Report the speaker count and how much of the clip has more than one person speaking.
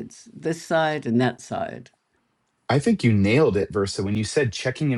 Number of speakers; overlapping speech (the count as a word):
two, no overlap